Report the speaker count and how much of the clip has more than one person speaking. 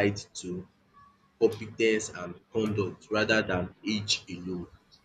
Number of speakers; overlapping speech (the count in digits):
1, no overlap